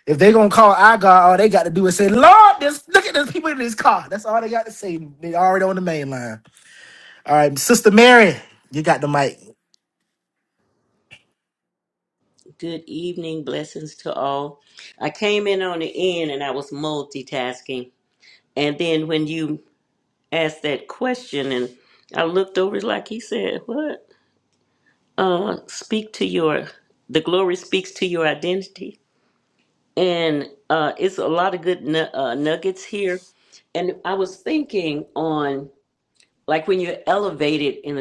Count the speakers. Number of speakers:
two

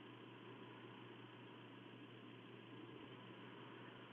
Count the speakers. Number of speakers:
zero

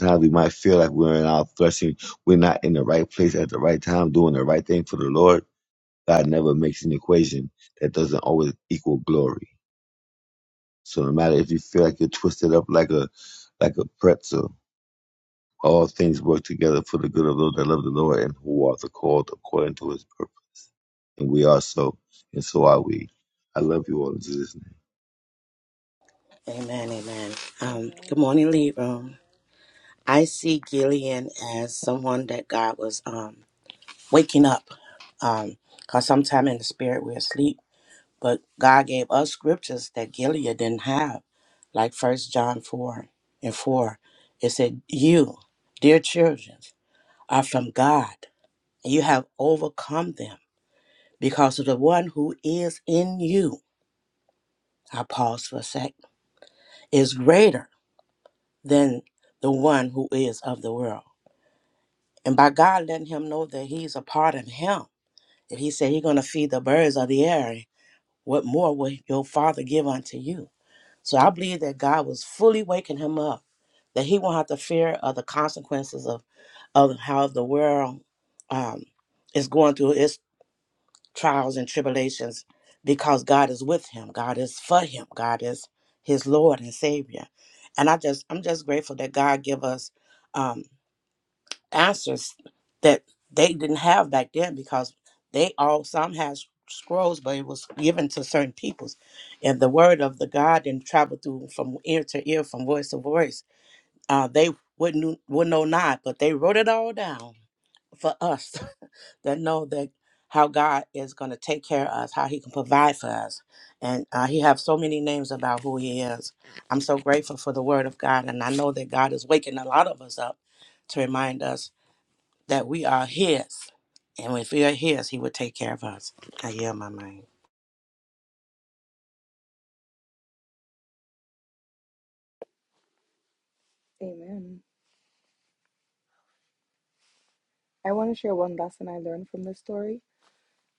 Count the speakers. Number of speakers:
three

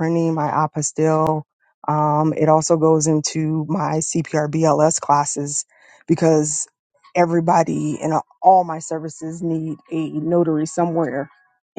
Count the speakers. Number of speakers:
one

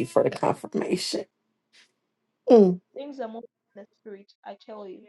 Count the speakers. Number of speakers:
two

